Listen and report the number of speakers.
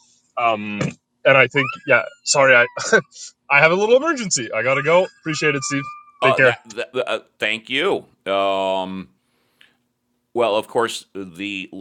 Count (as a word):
two